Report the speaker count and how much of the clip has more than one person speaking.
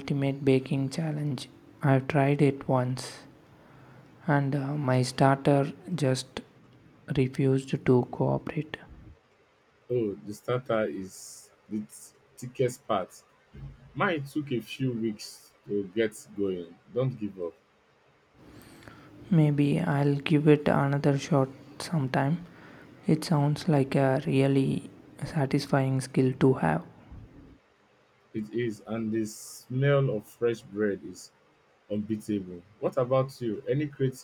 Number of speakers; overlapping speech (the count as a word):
two, no overlap